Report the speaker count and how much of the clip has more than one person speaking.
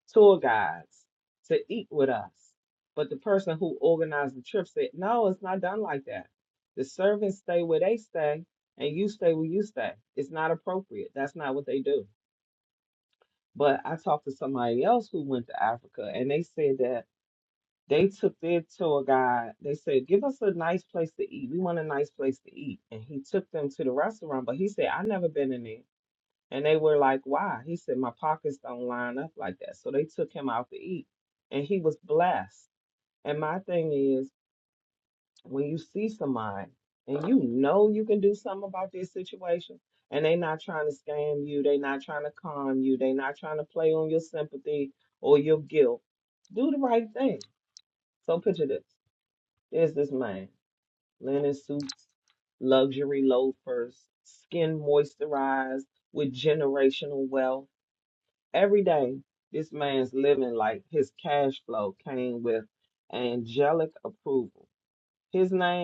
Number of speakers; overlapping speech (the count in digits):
1, no overlap